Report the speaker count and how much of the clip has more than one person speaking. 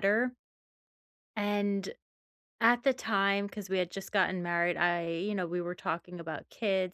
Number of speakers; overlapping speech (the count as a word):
one, no overlap